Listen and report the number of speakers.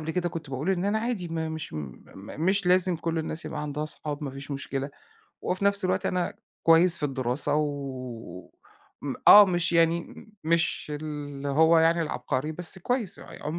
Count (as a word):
one